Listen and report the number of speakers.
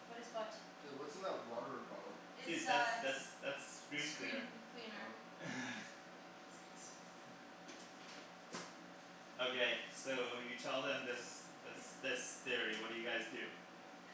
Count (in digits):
3